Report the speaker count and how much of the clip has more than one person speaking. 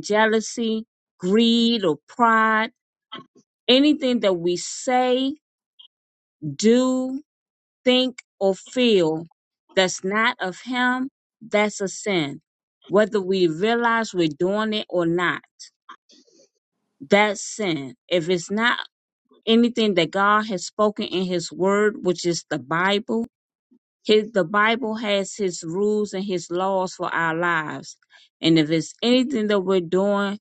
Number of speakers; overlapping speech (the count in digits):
1, no overlap